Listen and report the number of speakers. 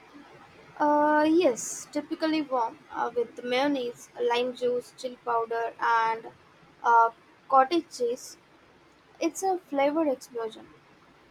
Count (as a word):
one